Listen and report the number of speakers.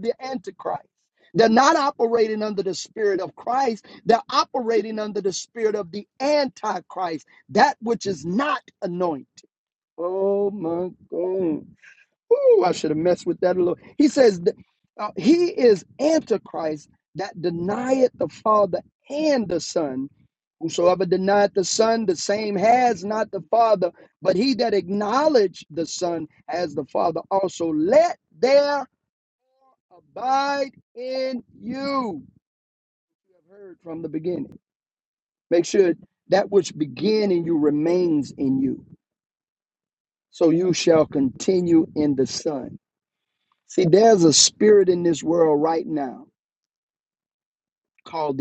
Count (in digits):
1